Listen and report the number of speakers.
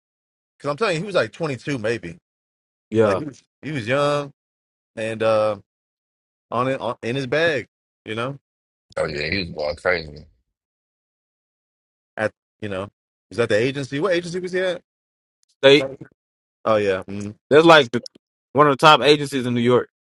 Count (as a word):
three